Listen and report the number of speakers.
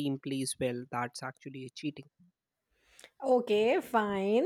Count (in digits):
2